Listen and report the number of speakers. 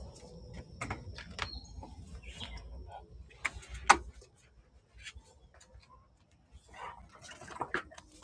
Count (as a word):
zero